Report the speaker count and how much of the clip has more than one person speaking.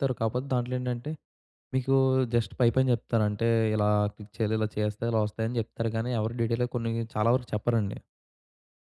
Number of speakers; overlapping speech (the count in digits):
1, no overlap